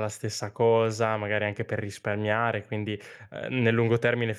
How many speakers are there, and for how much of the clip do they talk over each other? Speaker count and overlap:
one, no overlap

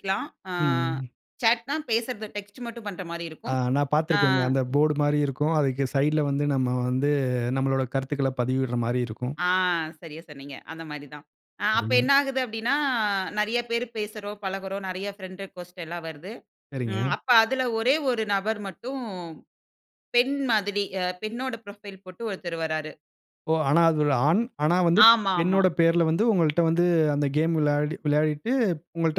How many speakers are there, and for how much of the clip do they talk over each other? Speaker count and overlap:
two, about 5%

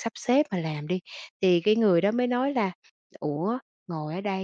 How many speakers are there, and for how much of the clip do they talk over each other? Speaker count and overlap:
one, no overlap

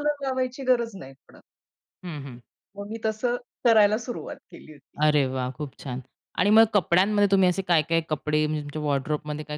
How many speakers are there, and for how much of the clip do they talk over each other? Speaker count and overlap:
two, no overlap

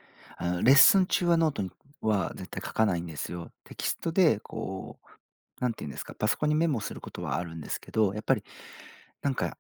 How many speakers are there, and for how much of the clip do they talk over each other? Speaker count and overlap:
one, no overlap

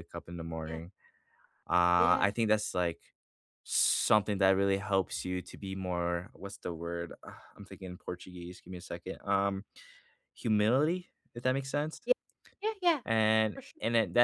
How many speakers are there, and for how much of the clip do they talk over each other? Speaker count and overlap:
two, about 5%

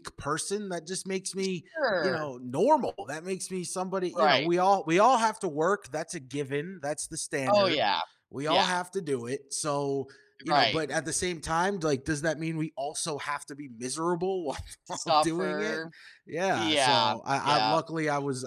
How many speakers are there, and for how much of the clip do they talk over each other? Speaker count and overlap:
two, about 21%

